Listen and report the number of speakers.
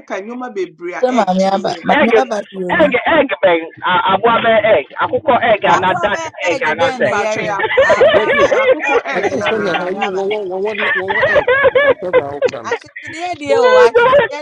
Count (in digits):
4